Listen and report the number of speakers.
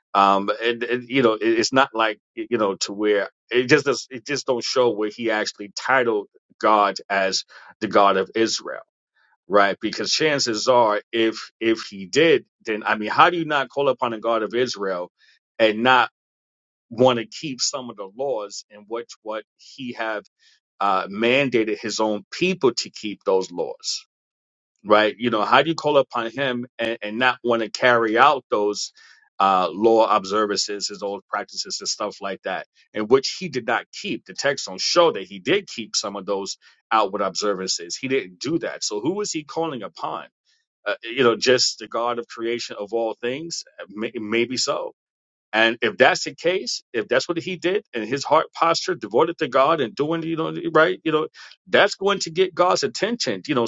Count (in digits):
1